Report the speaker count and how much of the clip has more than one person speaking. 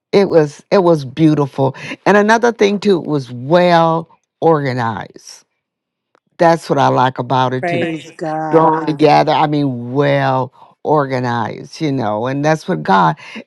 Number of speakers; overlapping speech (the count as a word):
two, about 4%